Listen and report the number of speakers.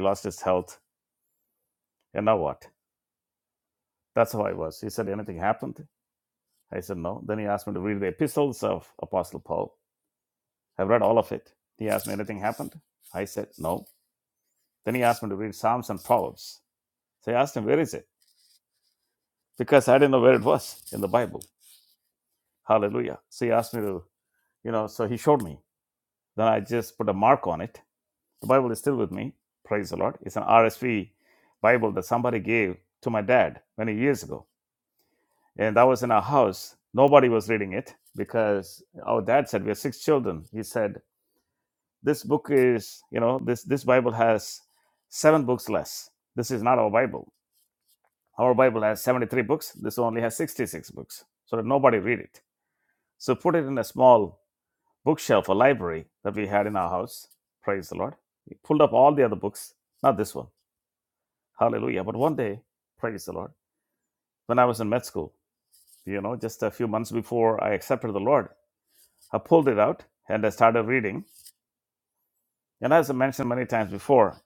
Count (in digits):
1